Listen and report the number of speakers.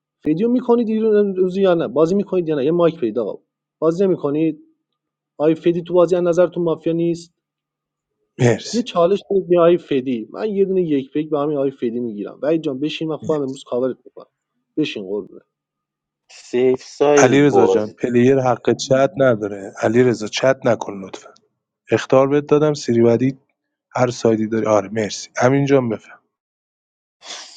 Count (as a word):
three